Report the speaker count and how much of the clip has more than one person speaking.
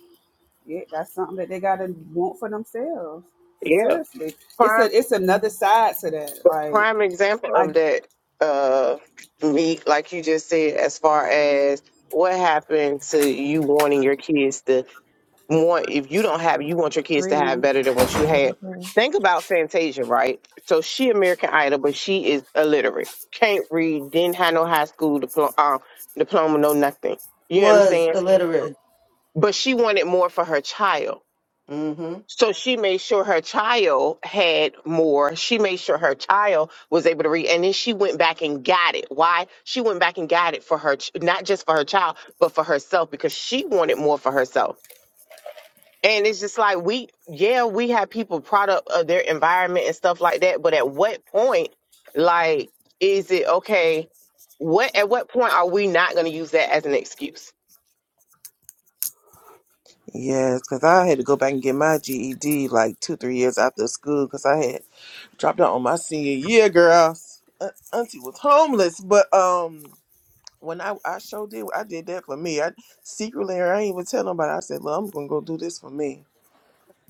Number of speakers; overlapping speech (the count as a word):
four, about 3%